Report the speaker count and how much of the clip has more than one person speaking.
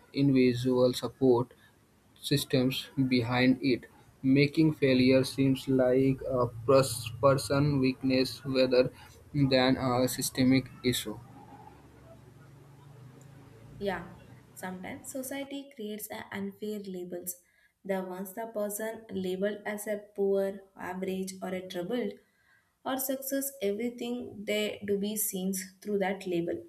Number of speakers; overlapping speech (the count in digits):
2, no overlap